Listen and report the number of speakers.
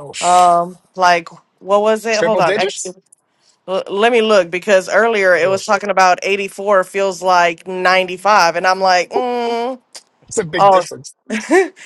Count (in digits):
2